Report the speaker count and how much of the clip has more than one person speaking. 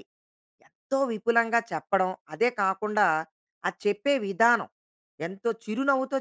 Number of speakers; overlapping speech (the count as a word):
one, no overlap